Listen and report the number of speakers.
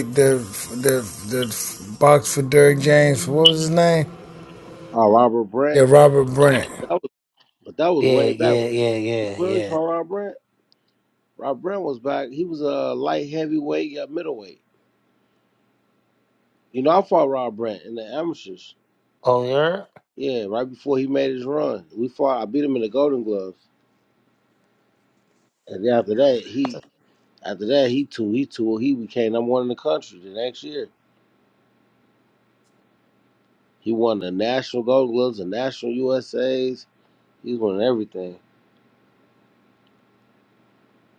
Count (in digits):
3